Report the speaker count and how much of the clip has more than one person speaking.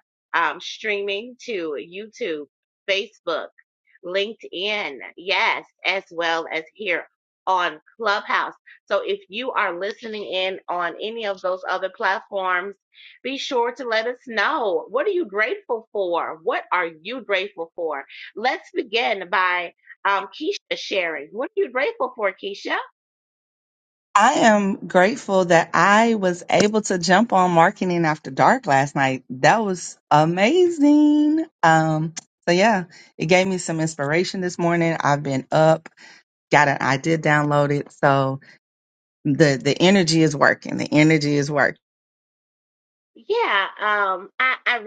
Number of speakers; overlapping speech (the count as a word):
two, no overlap